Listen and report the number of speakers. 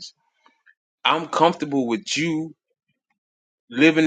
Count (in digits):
1